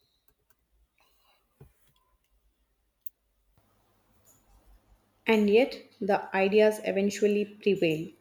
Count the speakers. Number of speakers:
one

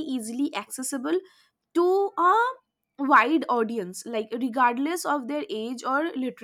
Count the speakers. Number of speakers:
one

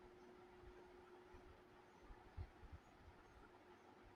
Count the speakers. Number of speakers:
zero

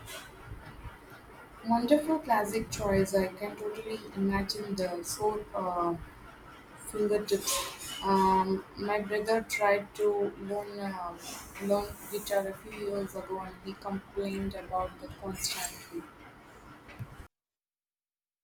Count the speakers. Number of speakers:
one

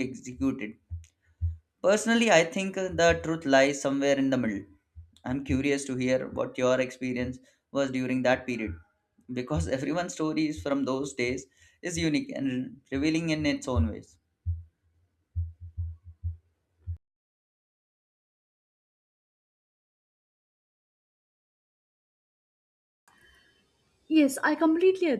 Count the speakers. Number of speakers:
two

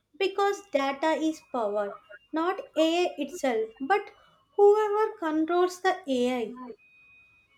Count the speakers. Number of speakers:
one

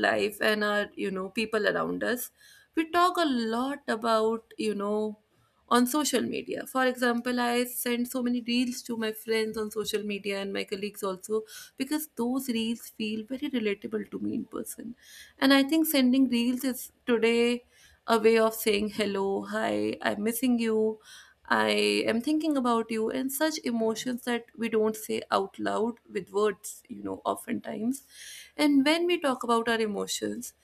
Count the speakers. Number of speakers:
one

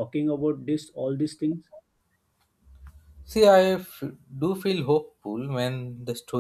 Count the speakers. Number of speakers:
two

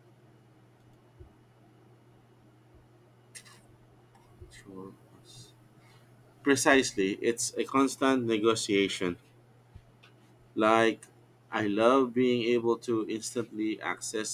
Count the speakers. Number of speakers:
one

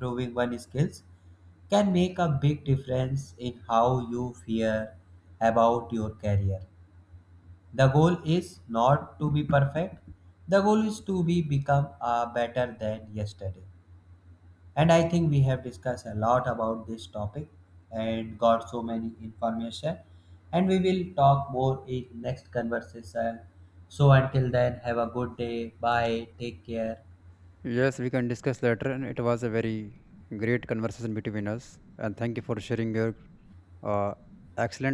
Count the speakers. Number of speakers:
two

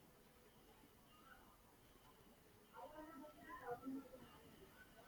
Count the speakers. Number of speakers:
zero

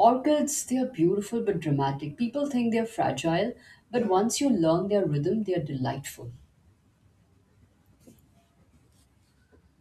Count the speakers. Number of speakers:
one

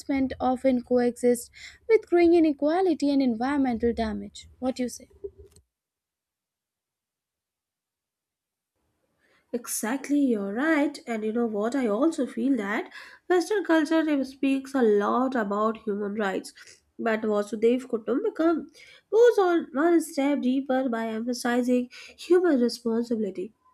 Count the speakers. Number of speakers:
two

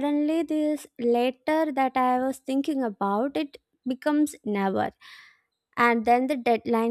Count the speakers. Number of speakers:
one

